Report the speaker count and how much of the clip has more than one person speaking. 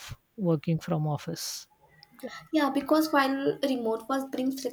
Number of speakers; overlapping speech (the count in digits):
2, no overlap